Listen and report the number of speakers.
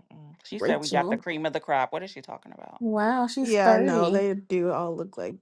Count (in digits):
3